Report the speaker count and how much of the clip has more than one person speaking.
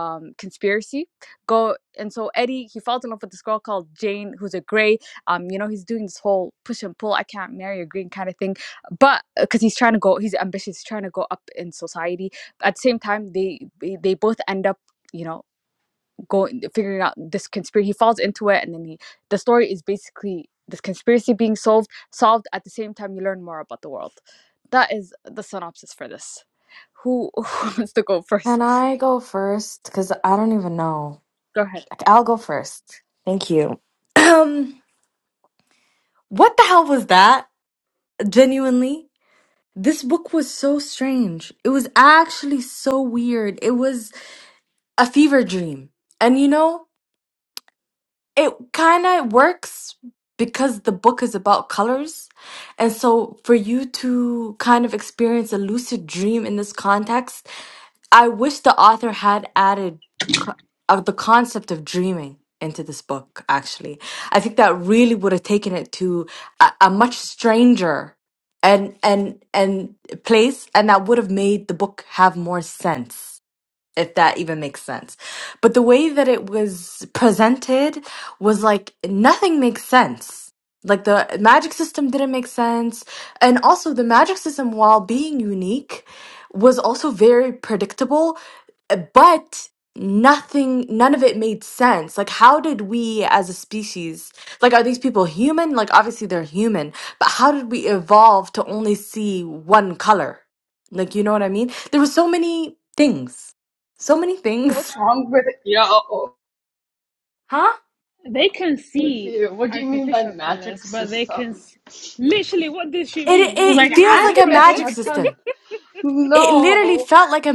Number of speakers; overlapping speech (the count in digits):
4, about 5%